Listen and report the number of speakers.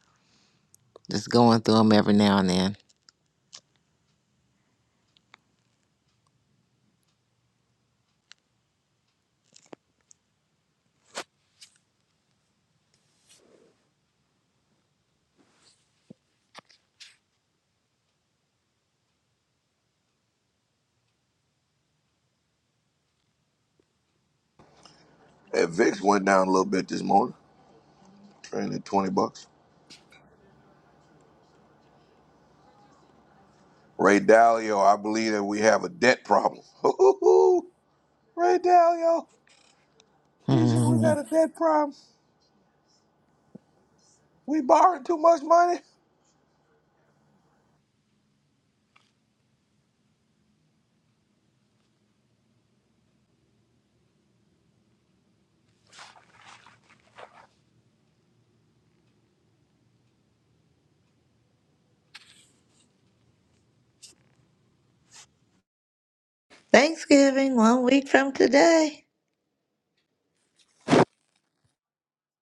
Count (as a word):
three